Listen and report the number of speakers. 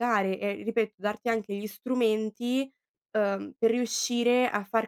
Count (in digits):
1